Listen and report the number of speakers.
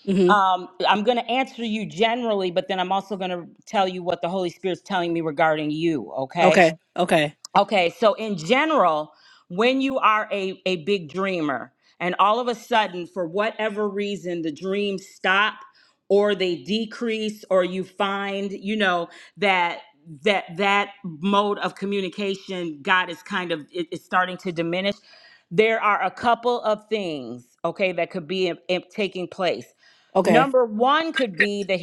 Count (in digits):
2